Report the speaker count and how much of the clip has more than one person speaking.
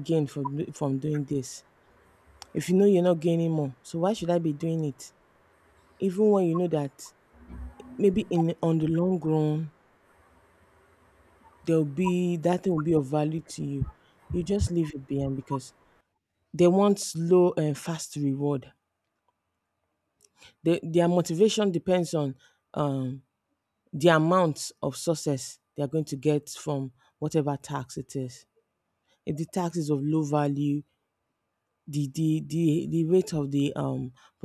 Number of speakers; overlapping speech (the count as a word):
one, no overlap